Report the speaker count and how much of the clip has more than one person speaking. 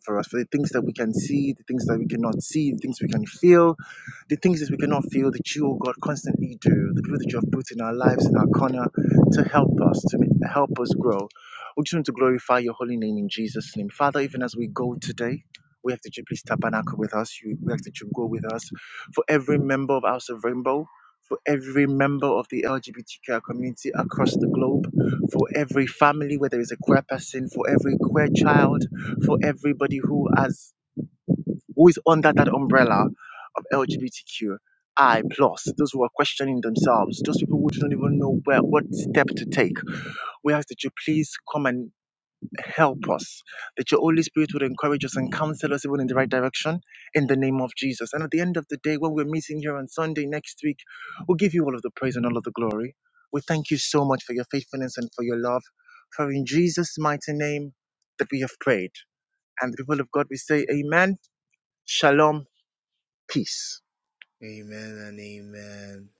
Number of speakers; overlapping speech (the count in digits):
2, no overlap